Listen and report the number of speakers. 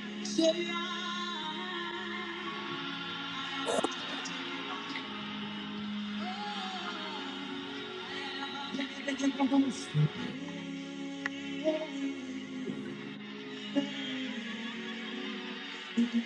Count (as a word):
zero